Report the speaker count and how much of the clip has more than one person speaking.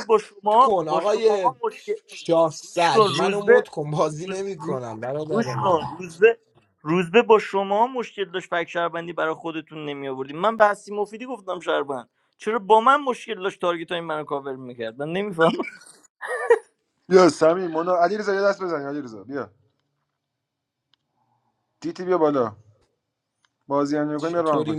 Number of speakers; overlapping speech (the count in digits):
3, about 14%